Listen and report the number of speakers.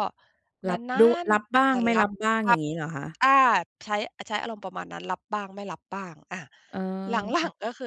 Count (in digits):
2